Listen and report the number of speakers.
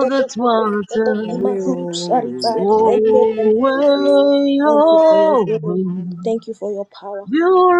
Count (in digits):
3